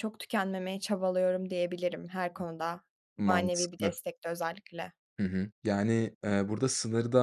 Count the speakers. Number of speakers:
2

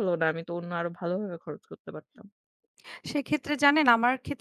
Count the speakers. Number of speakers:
2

